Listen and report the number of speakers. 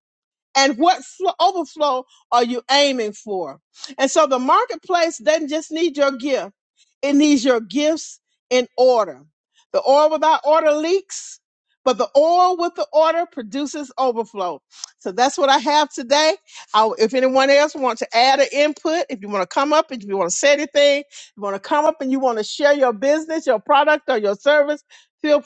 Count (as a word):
one